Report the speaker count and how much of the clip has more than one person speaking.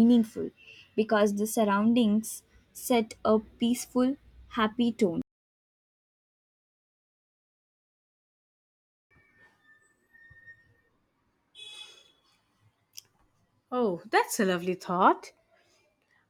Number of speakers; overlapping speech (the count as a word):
two, no overlap